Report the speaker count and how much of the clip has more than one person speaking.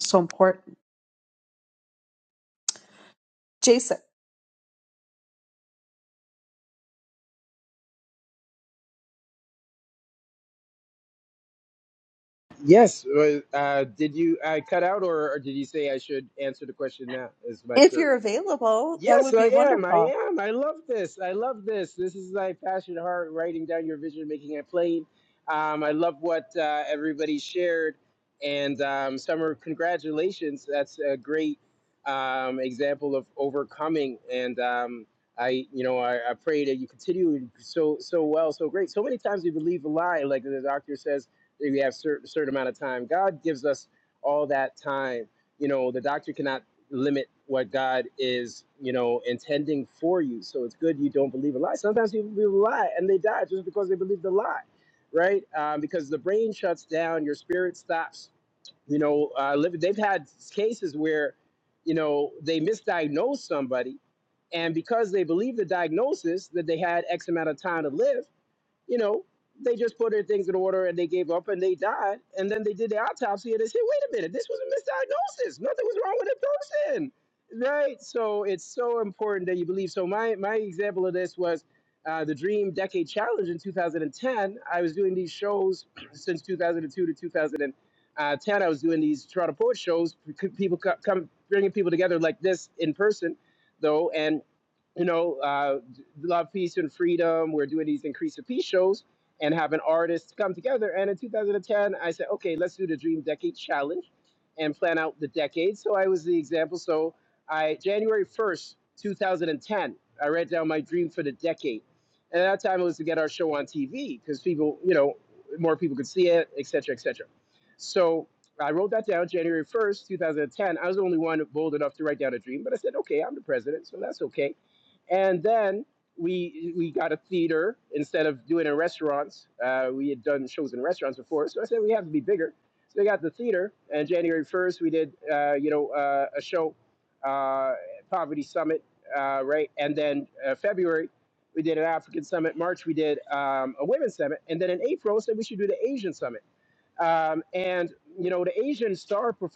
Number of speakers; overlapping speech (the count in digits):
2, about 1%